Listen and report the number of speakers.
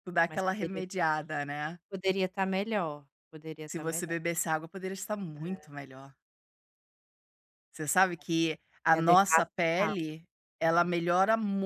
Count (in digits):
2